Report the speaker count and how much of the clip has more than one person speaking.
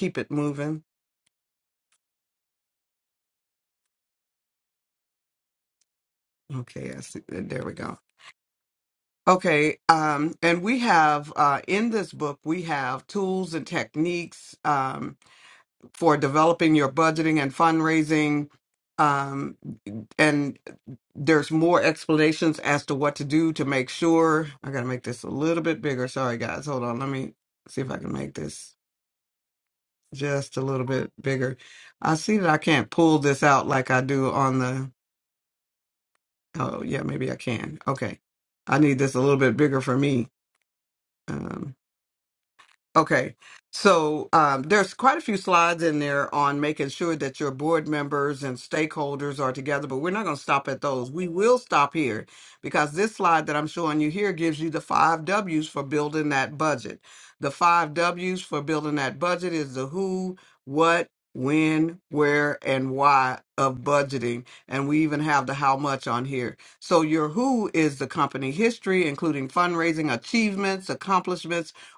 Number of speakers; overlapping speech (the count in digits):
1, no overlap